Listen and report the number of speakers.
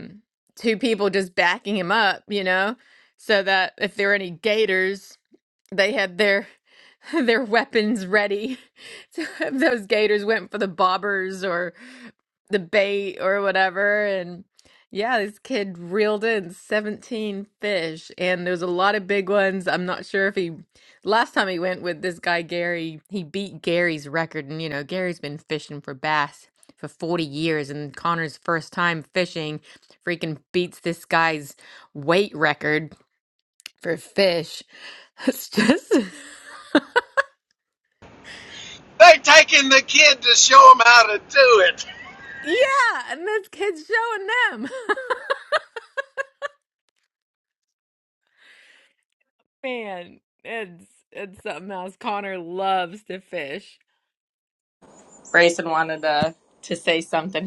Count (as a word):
three